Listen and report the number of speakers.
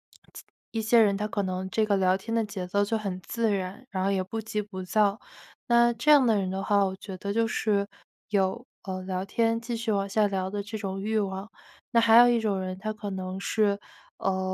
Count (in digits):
1